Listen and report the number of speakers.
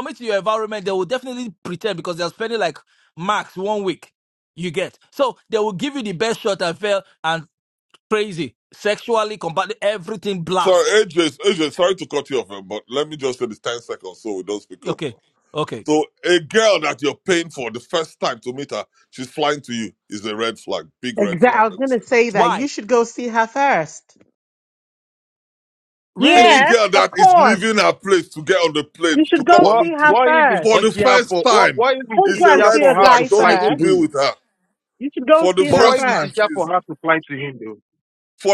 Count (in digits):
4